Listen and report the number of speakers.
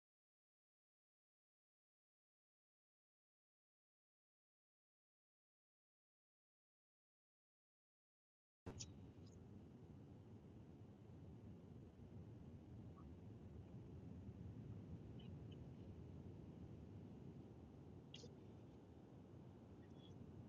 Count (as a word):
zero